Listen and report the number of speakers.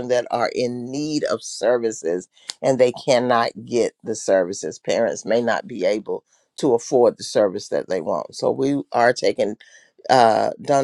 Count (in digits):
1